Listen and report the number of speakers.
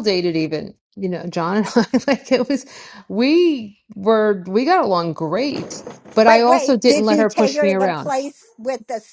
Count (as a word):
two